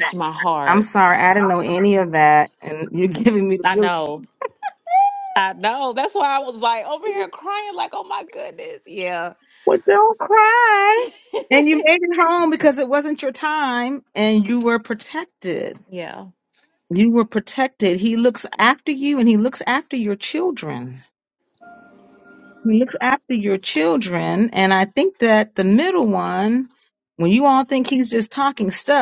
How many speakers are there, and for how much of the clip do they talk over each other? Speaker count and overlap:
2, about 2%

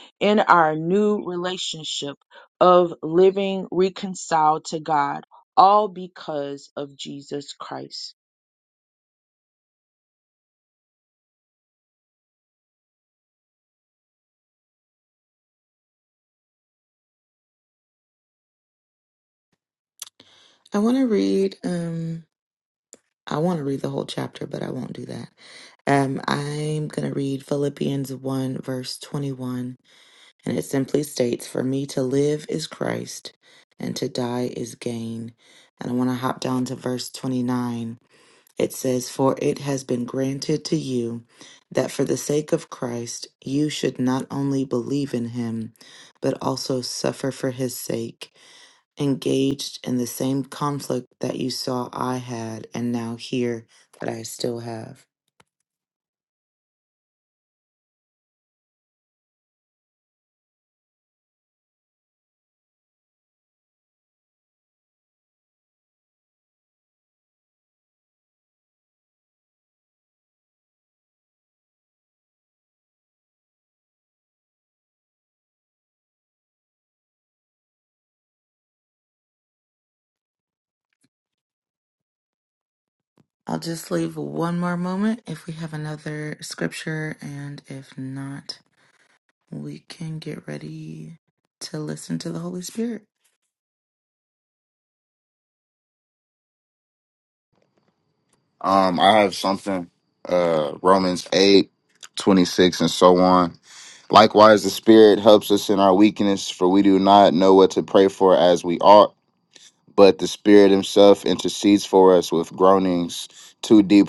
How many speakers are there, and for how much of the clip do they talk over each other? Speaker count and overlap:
3, no overlap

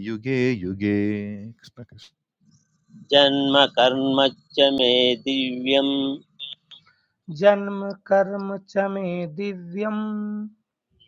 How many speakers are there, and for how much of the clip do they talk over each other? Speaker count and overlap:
3, no overlap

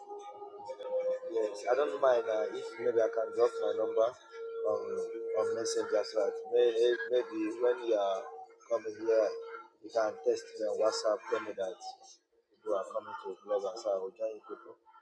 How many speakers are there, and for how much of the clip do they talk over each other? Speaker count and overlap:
1, no overlap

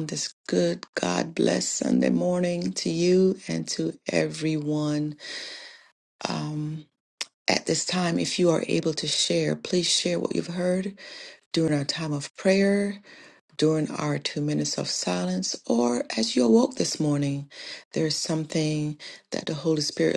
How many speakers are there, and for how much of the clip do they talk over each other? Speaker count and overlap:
1, no overlap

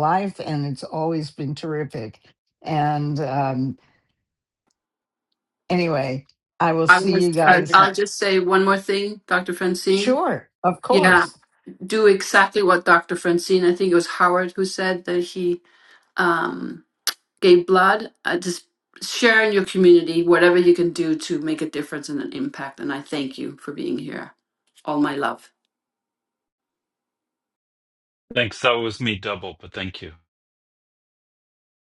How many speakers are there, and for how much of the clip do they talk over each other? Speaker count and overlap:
3, about 5%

